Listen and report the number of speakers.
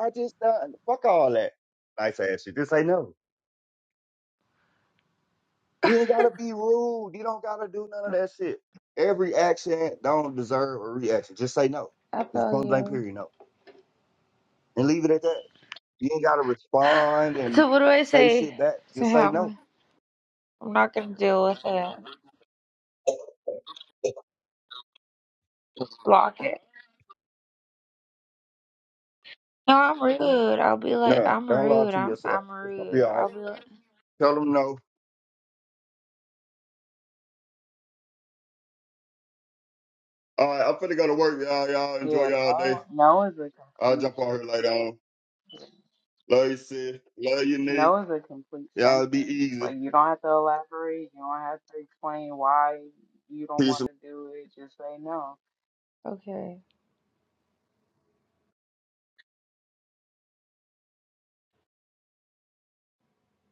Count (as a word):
three